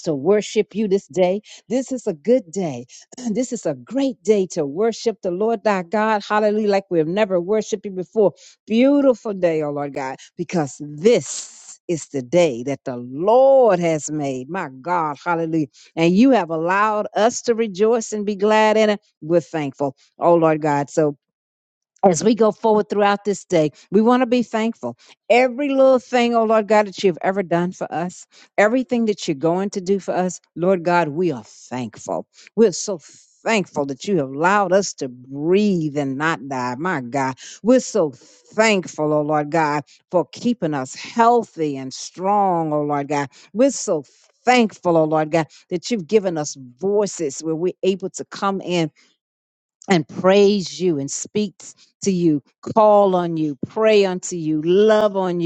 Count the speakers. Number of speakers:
1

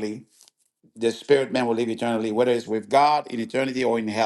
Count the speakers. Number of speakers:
1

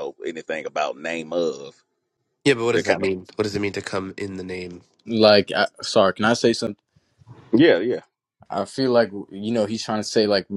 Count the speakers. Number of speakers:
3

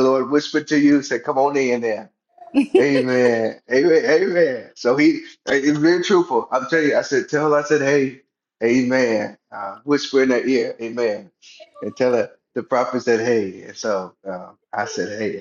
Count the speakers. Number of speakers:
1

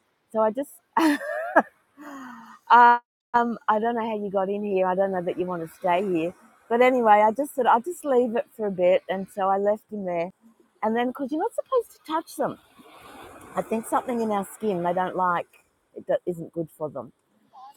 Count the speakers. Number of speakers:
1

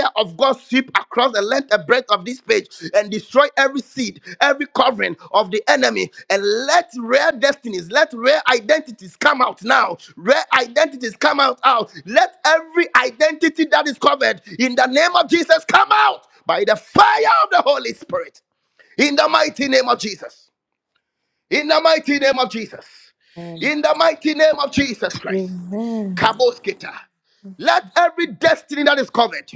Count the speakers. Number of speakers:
2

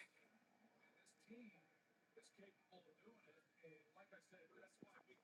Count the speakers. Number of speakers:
0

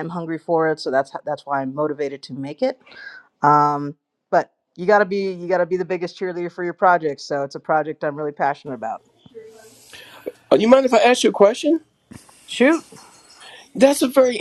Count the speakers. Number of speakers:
2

